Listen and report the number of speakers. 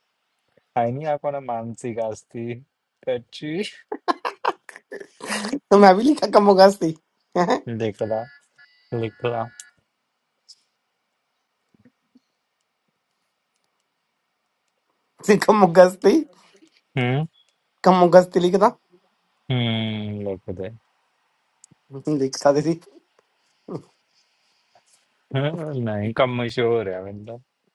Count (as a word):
two